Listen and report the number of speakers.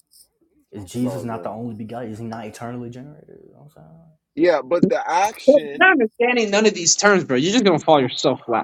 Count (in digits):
3